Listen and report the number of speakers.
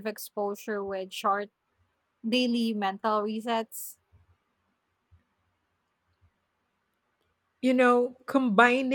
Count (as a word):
two